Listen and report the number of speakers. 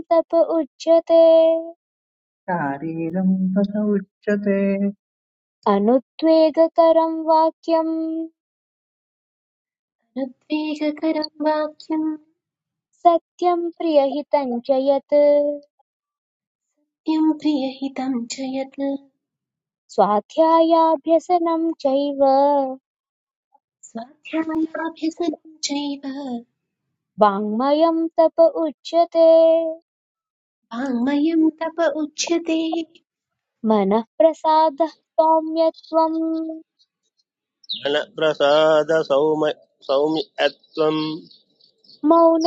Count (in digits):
4